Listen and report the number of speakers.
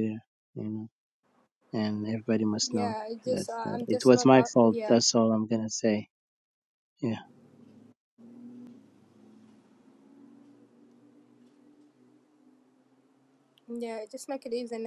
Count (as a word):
two